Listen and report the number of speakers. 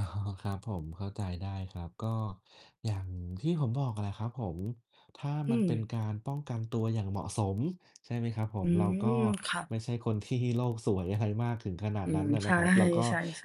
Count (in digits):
2